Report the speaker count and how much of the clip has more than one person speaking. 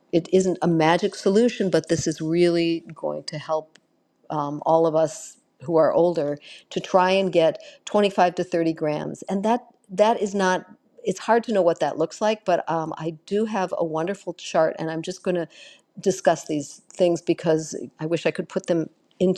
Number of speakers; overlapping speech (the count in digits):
1, no overlap